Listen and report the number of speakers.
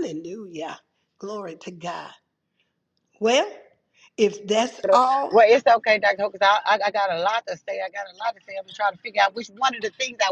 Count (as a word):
two